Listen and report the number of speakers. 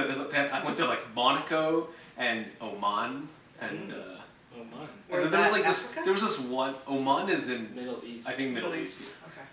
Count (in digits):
3